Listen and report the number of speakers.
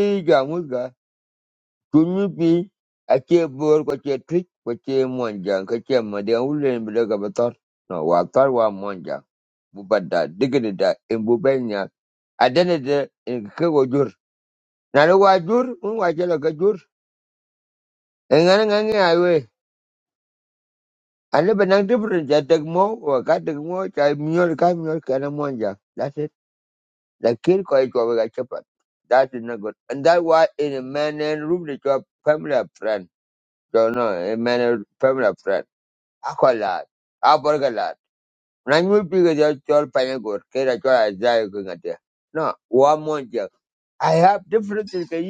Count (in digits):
1